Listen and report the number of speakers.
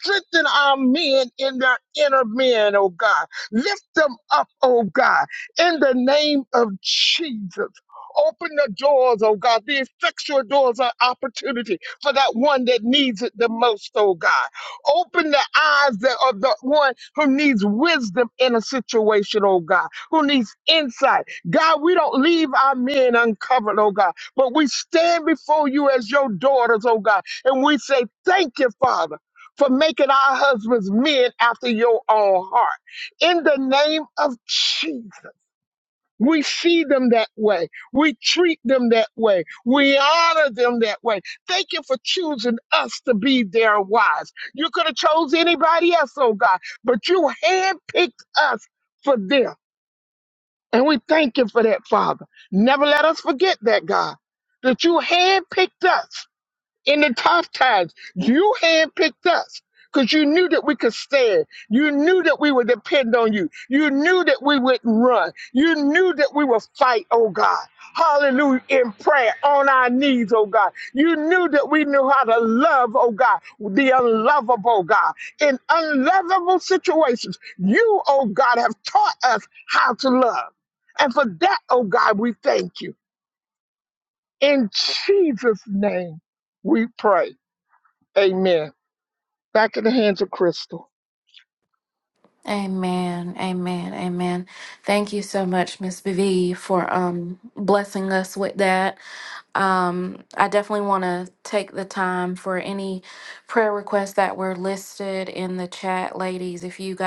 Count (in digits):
2